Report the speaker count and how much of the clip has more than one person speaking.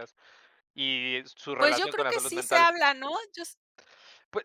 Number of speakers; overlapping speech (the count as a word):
two, about 23%